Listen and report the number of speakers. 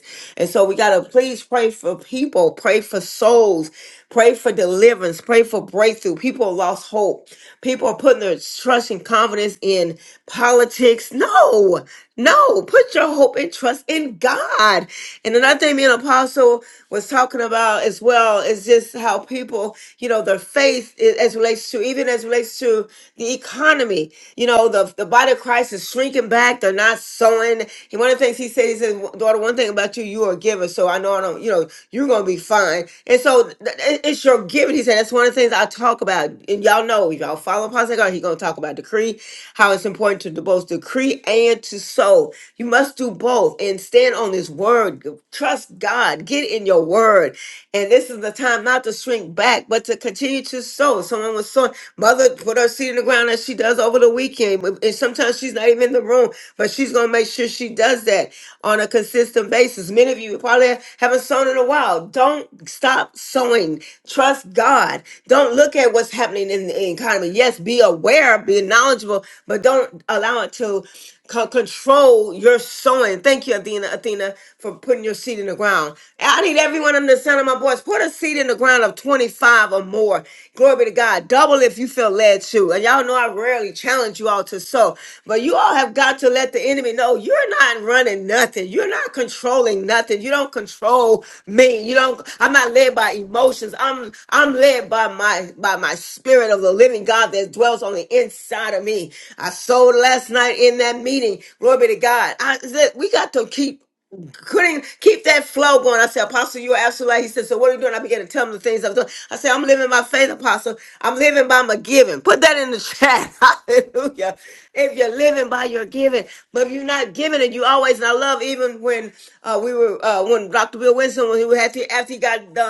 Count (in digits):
1